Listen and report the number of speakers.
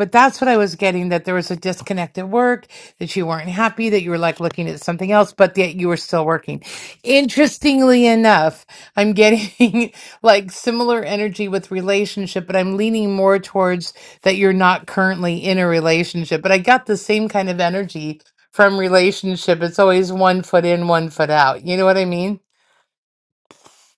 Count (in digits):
1